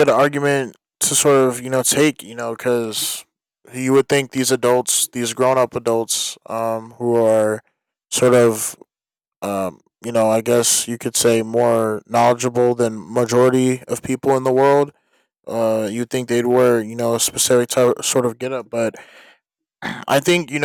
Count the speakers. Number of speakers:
1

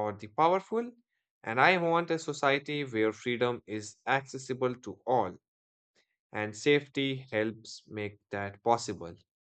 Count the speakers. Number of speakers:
1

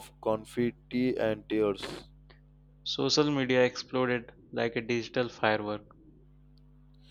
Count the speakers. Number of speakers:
2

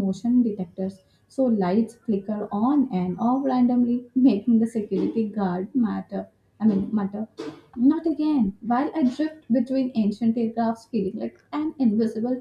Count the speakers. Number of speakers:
1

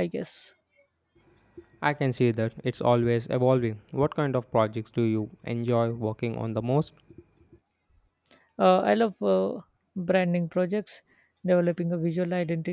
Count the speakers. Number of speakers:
2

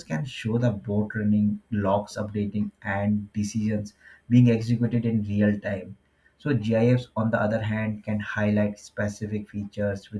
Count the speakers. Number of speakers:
1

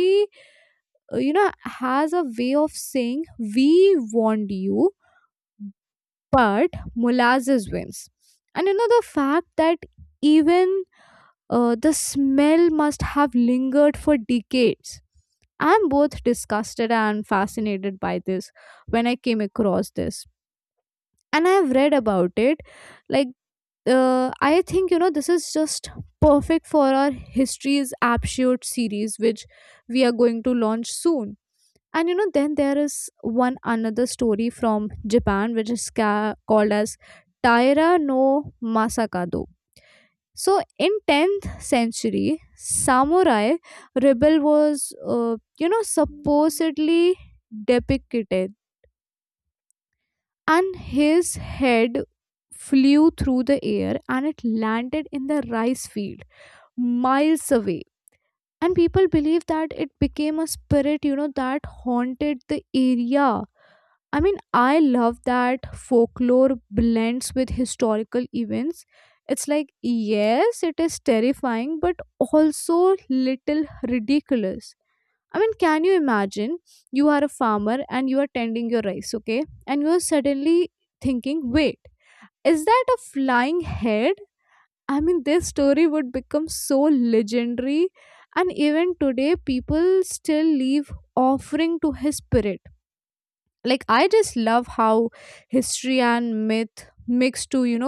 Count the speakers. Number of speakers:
1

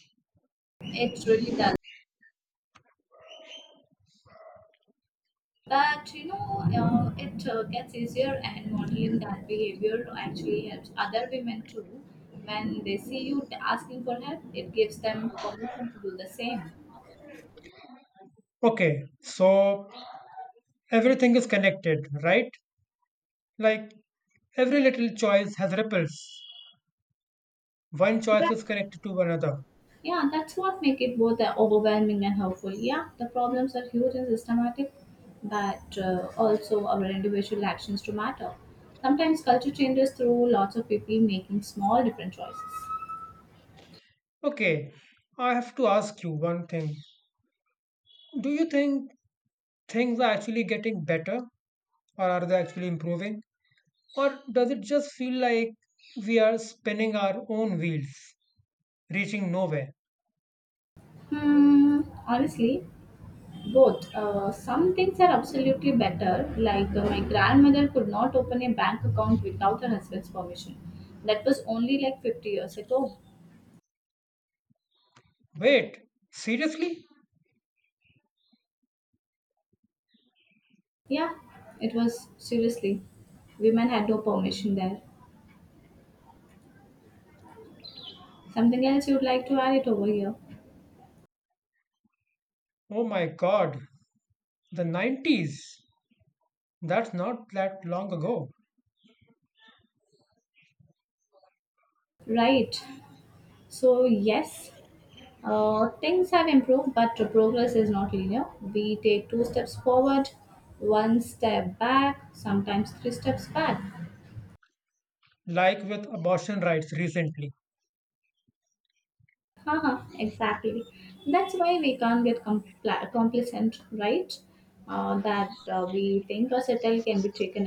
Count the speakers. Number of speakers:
2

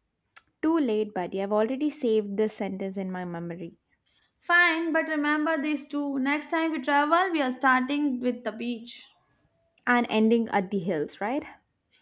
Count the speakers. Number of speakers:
2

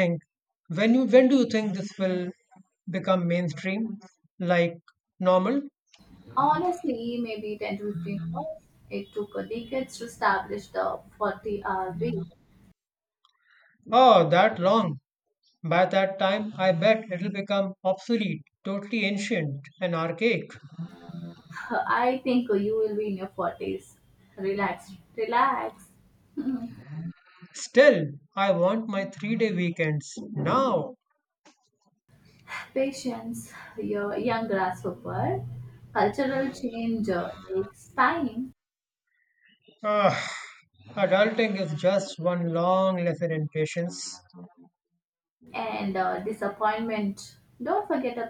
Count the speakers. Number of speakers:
2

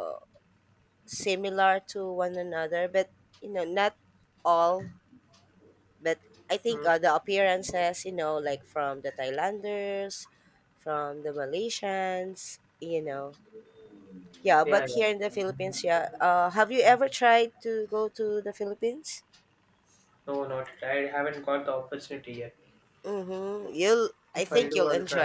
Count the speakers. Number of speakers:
2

